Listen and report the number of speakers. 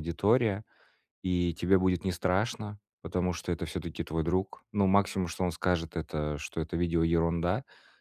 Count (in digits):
1